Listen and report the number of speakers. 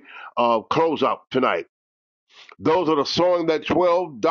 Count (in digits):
1